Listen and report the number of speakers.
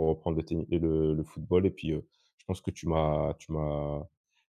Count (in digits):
1